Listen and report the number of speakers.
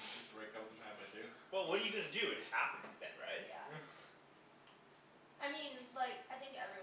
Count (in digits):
3